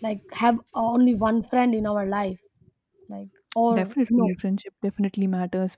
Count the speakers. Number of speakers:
two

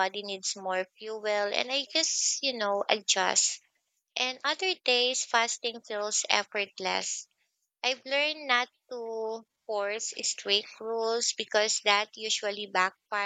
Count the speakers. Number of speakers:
one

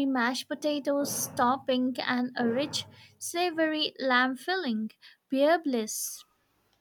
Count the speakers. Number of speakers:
one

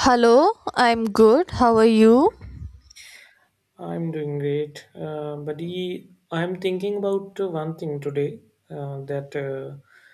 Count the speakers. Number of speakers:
two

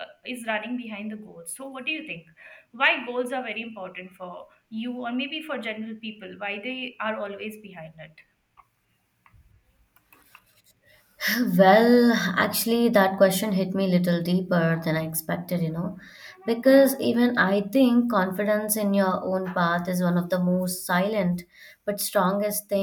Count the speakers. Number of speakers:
two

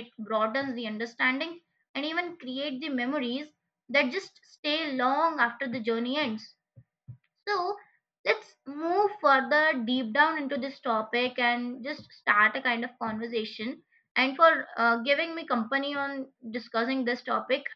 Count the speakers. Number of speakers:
one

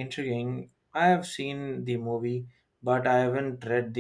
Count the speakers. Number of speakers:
one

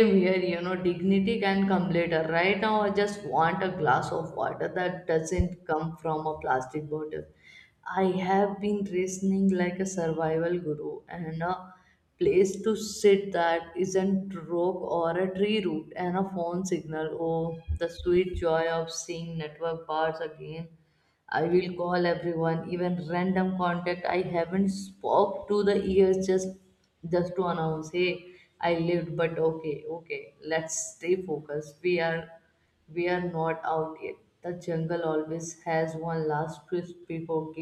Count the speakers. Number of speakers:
one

